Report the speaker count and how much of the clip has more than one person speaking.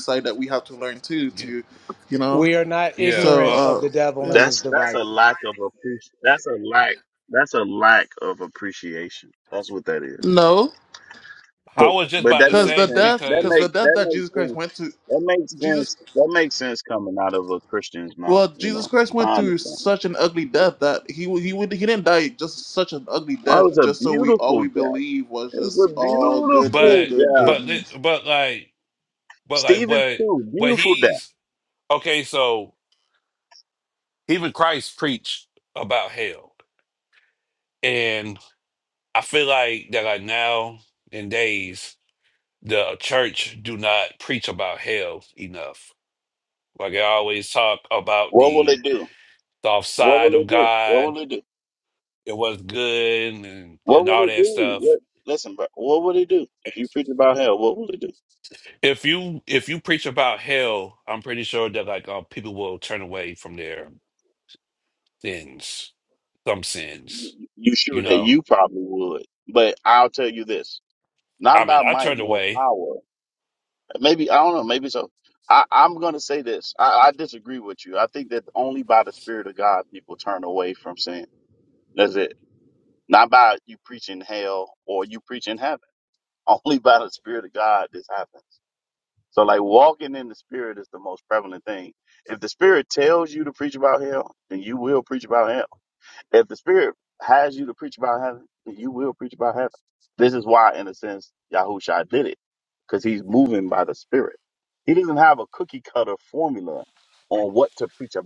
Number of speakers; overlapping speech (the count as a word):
four, about 14%